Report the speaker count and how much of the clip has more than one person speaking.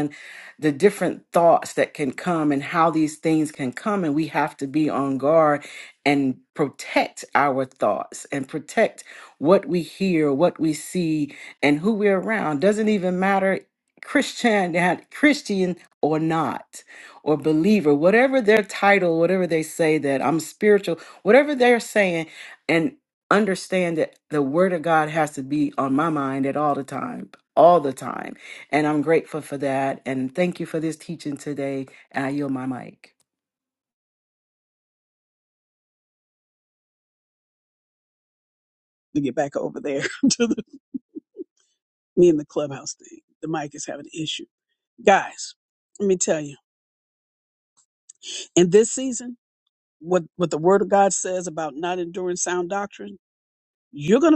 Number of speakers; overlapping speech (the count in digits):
2, no overlap